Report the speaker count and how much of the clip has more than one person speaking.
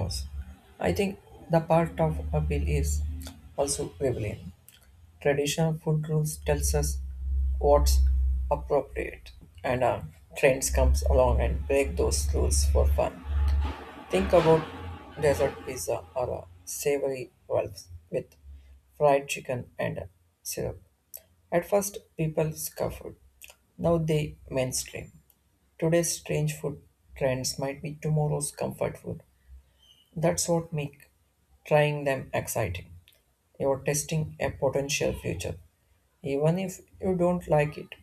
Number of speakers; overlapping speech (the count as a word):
one, no overlap